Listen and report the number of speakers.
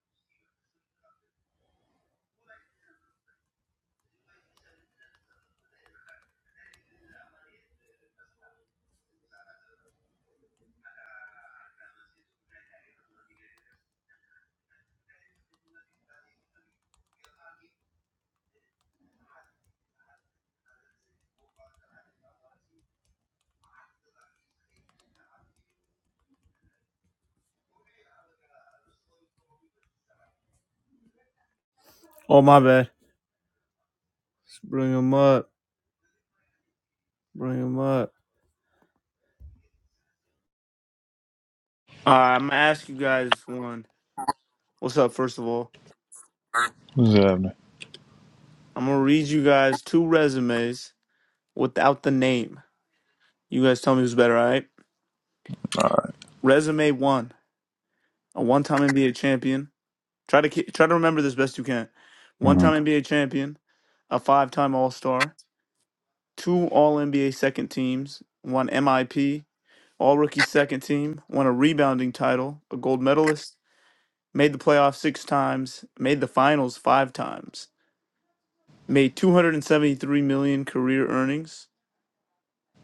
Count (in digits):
2